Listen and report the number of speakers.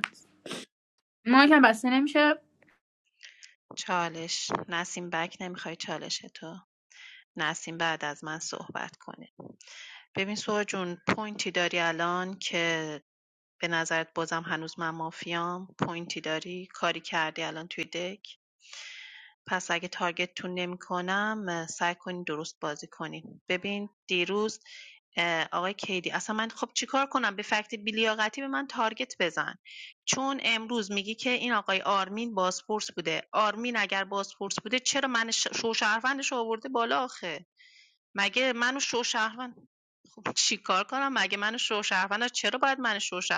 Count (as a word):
two